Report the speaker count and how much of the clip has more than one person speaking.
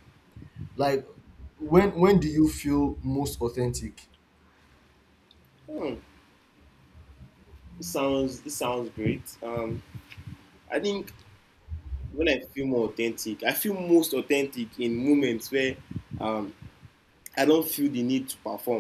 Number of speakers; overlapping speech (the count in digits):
2, no overlap